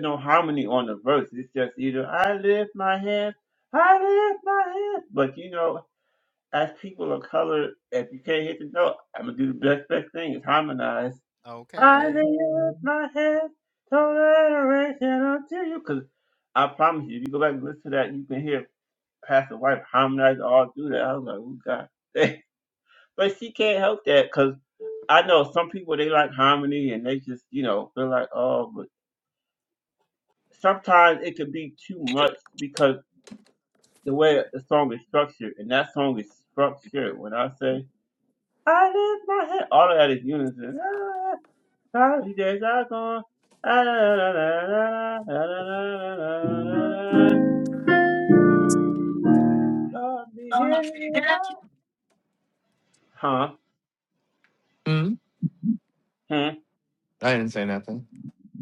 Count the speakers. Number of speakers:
two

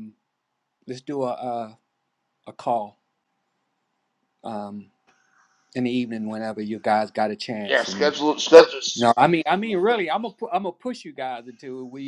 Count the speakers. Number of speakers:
two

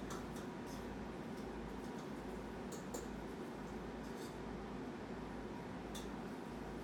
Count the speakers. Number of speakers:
zero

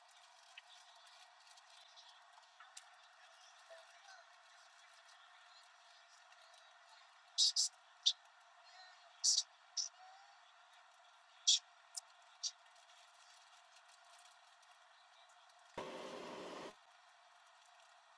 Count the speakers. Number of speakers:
zero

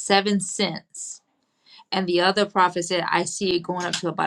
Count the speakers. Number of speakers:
one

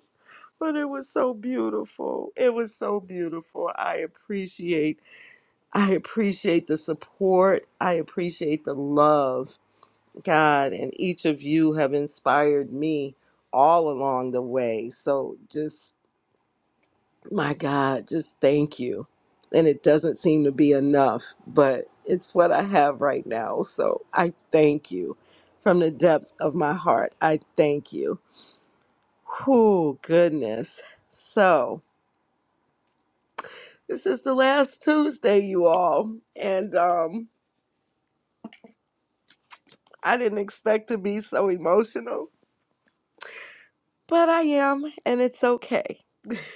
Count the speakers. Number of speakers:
one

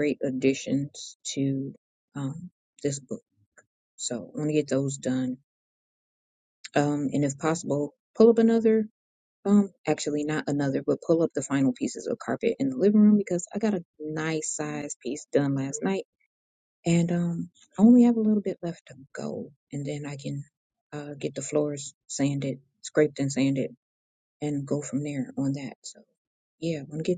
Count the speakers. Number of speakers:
one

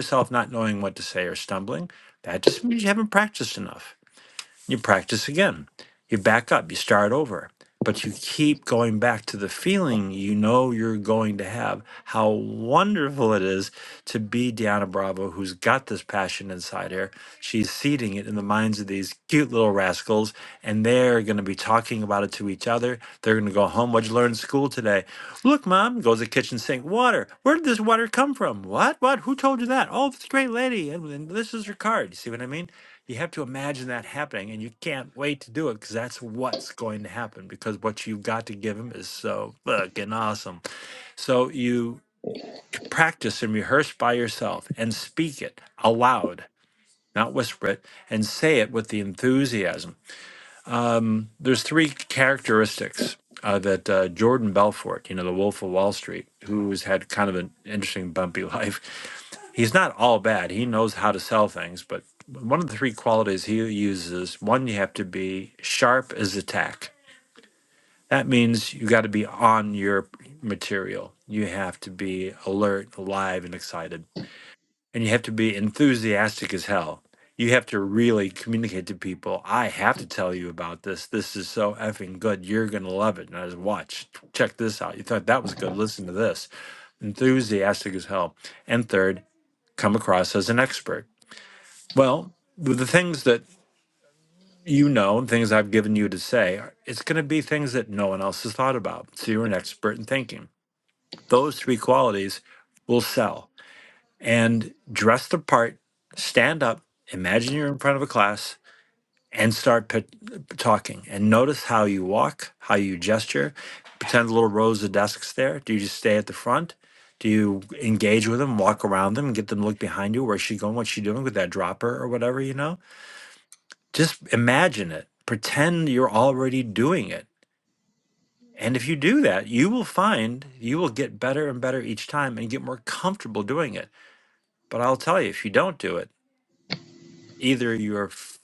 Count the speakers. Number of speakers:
one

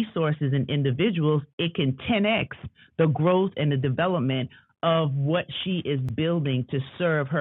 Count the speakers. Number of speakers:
one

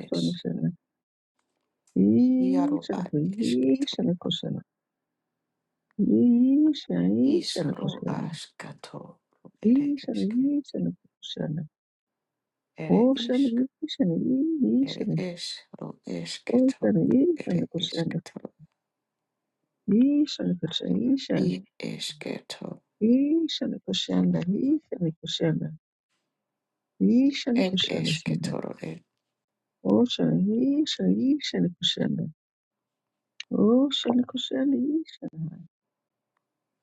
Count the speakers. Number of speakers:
two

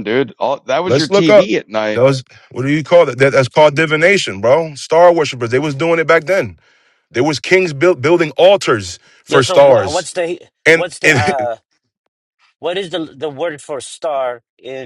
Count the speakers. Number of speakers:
three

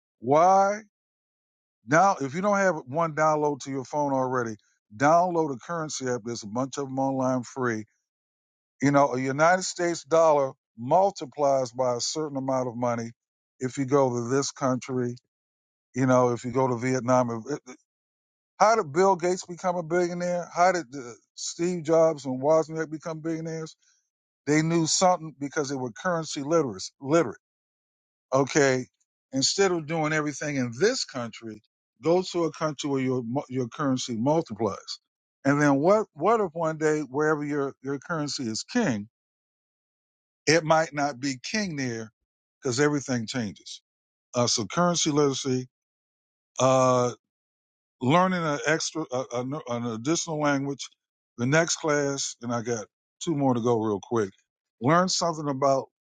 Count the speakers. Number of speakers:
one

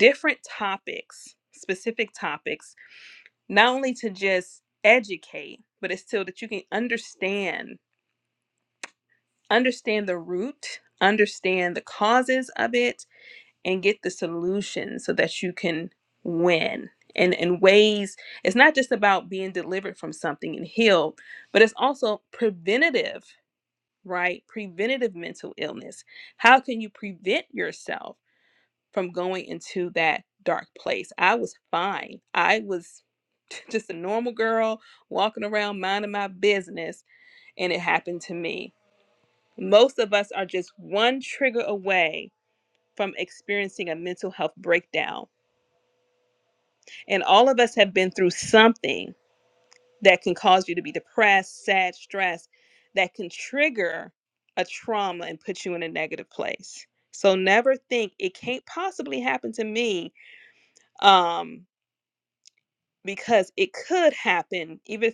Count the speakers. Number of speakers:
one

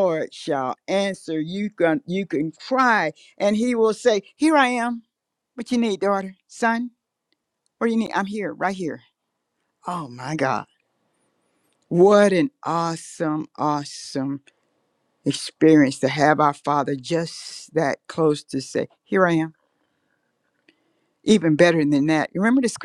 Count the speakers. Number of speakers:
one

